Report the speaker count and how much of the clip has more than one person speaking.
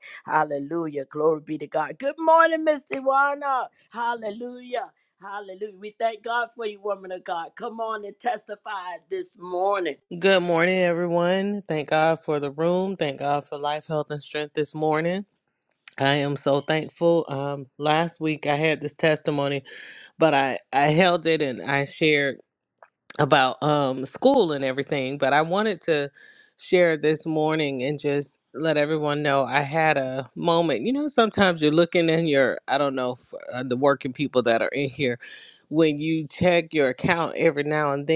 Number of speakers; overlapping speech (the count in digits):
2, no overlap